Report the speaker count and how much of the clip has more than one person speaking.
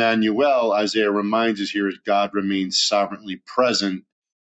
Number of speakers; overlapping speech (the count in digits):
1, no overlap